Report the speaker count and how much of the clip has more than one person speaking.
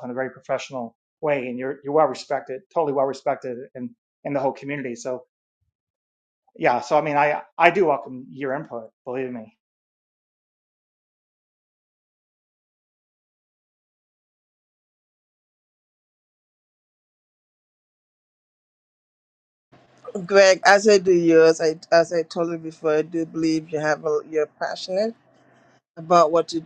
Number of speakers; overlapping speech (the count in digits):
2, no overlap